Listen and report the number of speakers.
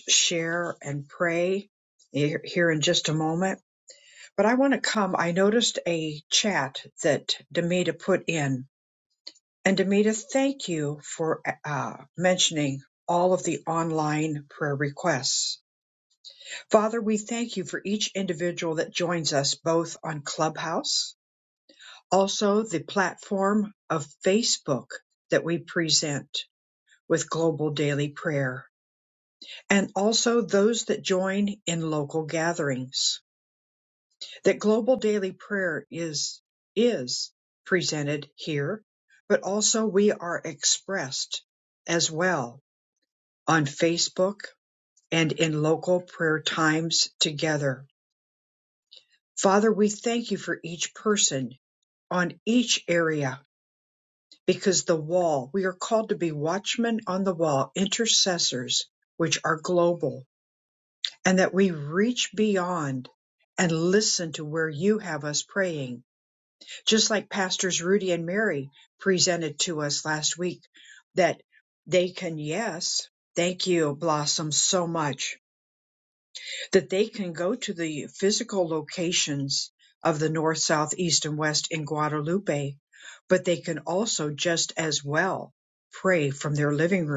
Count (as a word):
one